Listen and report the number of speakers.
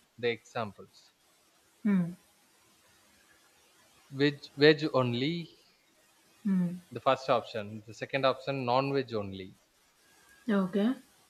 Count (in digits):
2